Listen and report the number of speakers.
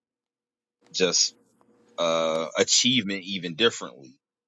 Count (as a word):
one